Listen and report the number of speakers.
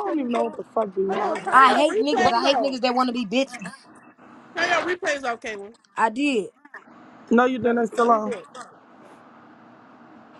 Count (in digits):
3